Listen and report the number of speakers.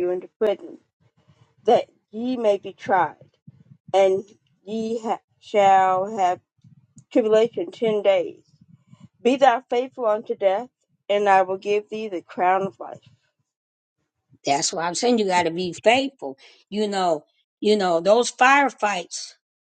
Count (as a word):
two